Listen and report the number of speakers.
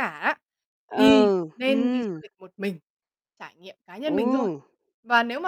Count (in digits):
2